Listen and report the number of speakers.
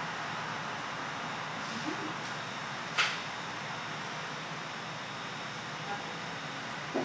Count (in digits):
0